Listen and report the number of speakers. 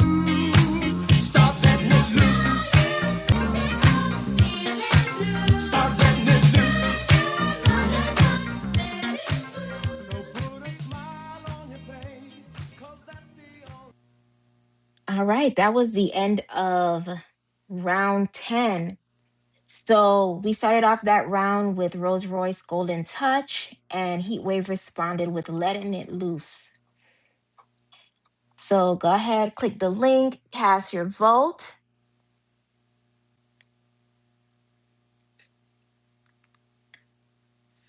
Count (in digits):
2